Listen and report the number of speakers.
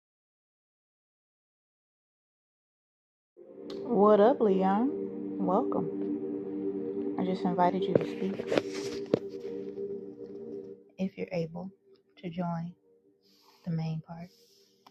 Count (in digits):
1